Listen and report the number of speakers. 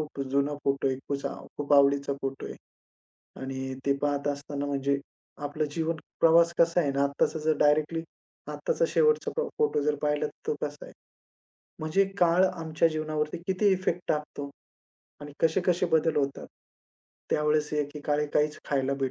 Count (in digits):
1